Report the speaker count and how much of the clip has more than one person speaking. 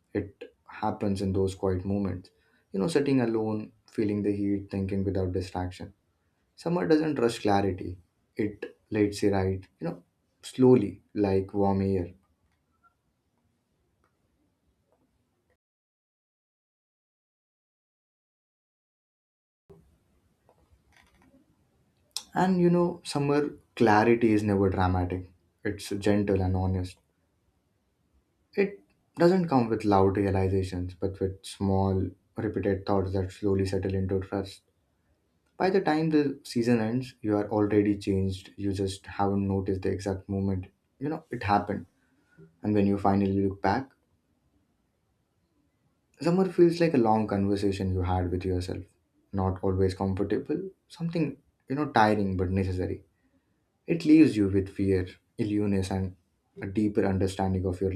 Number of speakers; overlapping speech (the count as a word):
one, no overlap